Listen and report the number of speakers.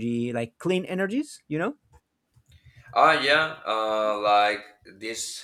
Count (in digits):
2